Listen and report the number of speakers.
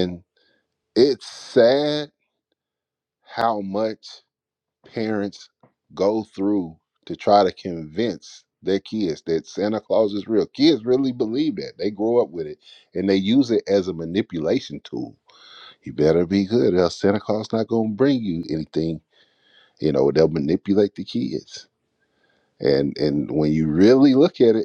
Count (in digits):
1